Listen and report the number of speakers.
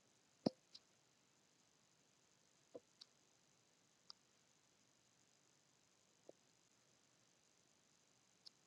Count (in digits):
0